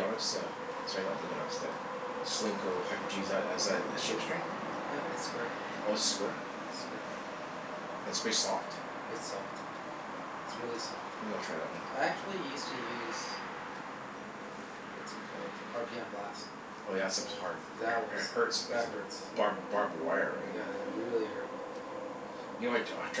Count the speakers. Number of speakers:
2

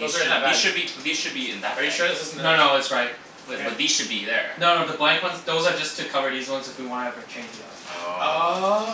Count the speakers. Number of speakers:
3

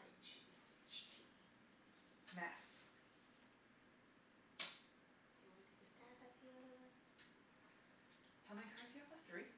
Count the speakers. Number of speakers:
2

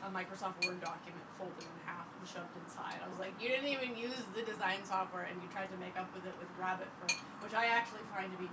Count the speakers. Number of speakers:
1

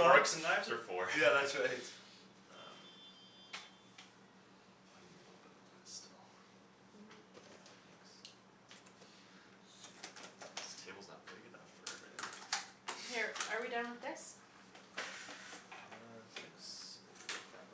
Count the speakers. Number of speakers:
3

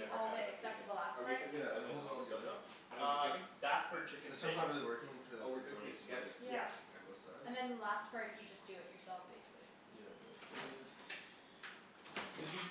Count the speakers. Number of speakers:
4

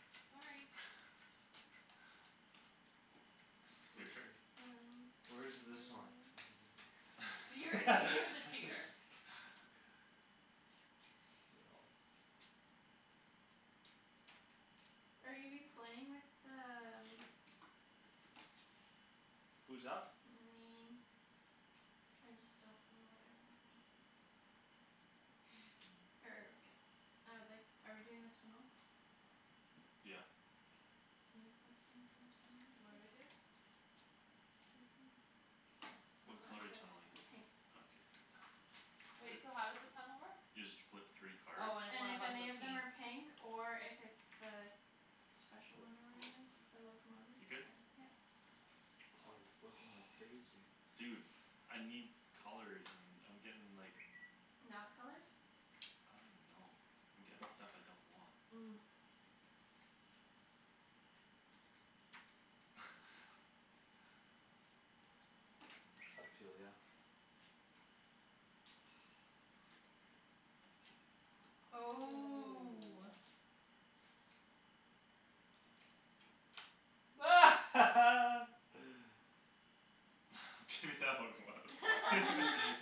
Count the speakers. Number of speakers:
4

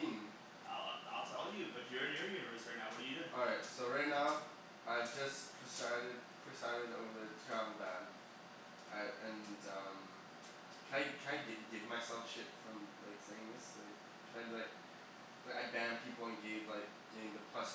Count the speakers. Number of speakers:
2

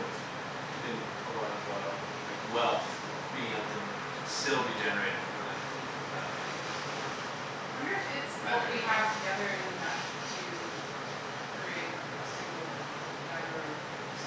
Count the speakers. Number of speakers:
2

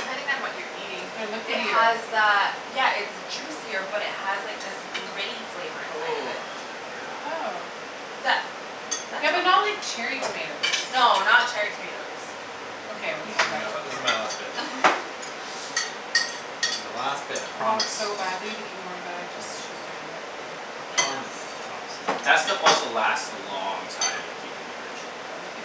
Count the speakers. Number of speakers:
4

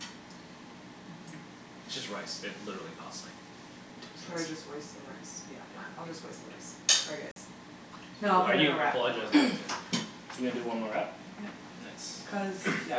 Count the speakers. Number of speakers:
3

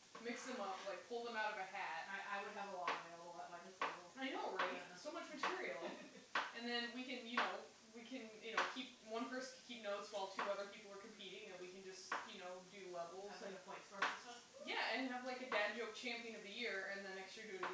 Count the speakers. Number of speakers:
2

